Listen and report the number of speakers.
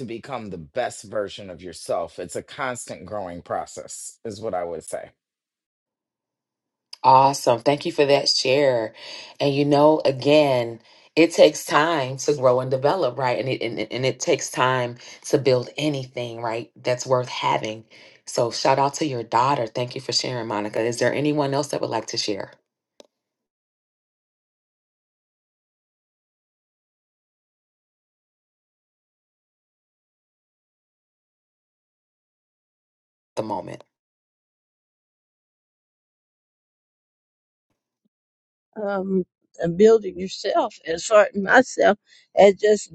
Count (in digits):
3